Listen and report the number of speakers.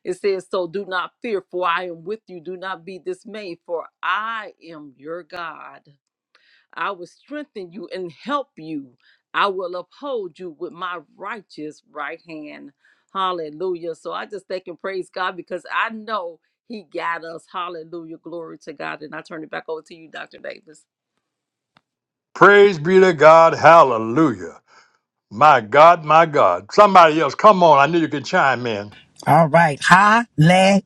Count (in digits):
3